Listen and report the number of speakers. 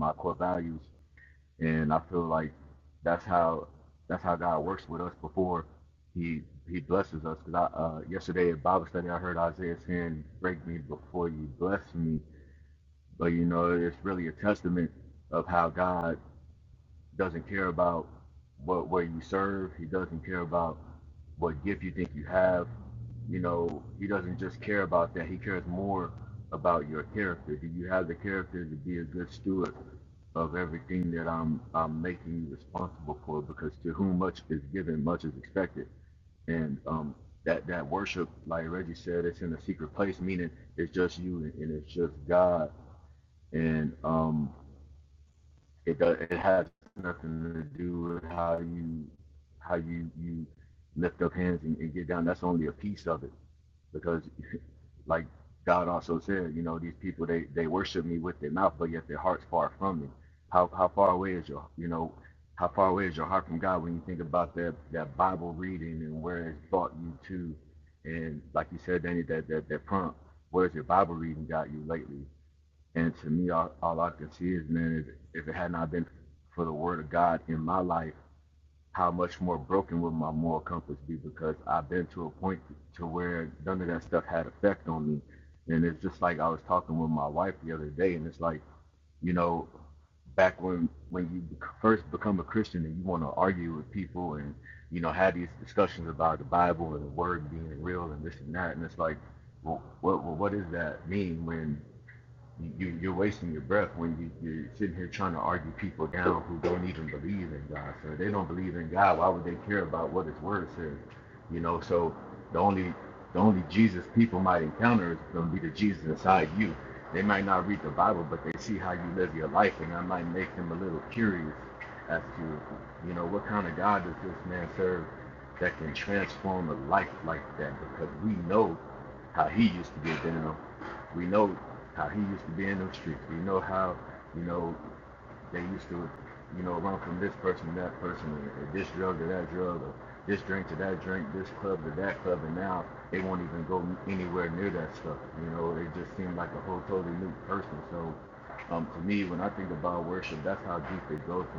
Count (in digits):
1